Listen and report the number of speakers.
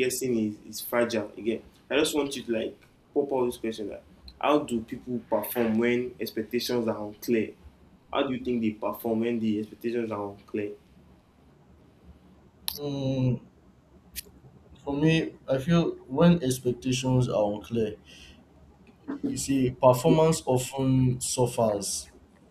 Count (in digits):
2